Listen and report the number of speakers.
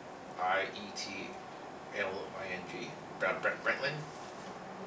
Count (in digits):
1